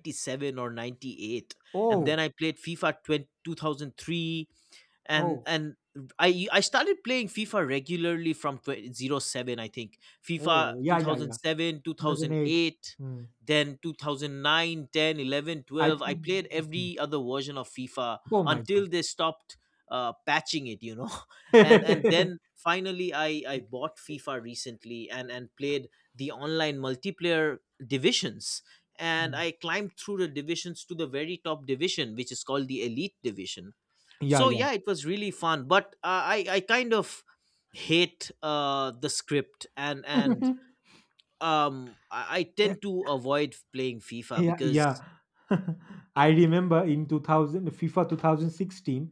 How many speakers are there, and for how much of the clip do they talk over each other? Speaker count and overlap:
2, about 8%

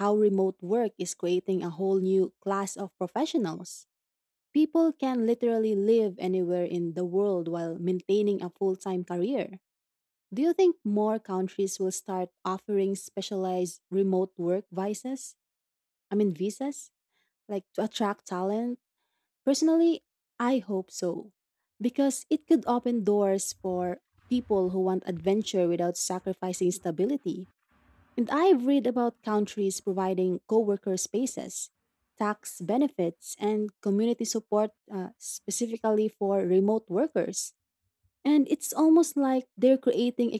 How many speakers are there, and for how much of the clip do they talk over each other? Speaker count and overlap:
1, no overlap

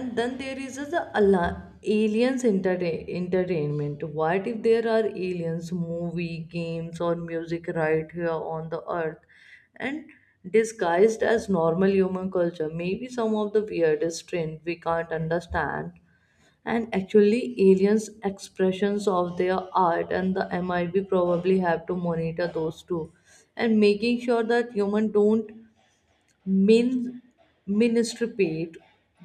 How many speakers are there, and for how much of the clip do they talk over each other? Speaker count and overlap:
1, no overlap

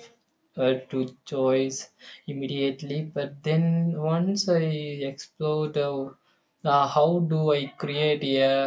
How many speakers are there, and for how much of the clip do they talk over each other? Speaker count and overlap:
1, no overlap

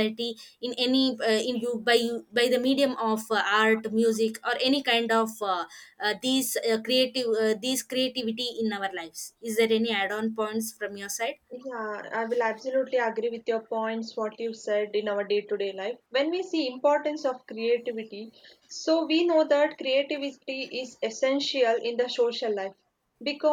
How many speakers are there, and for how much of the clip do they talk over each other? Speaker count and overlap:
2, no overlap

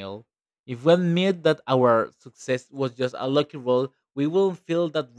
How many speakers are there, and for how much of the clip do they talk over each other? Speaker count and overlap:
1, no overlap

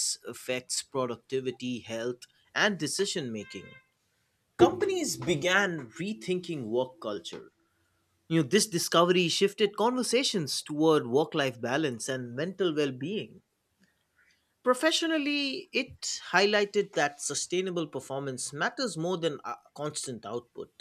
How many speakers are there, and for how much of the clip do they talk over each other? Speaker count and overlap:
1, no overlap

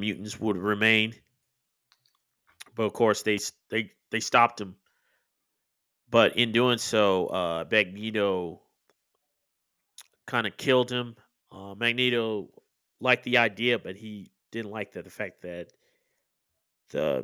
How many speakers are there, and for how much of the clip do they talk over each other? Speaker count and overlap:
1, no overlap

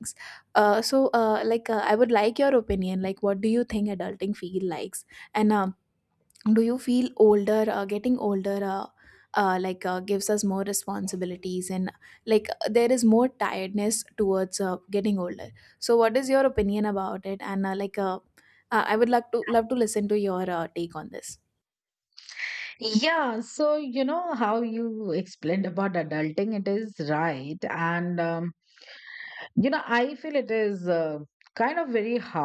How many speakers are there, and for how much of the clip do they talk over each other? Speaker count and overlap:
2, no overlap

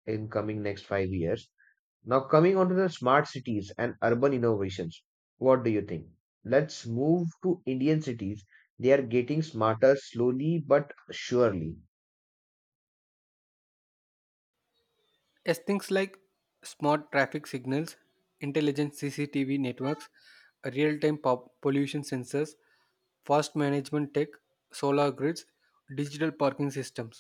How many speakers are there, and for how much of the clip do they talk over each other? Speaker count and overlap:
2, no overlap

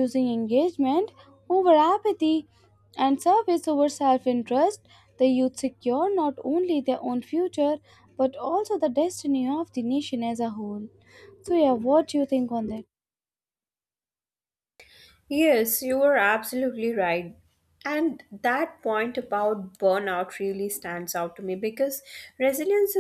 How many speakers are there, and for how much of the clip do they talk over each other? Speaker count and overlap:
2, no overlap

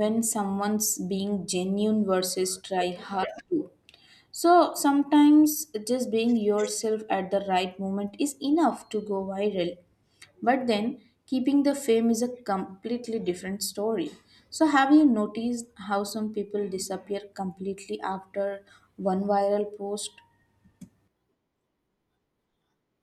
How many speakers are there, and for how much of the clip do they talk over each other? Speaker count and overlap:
1, no overlap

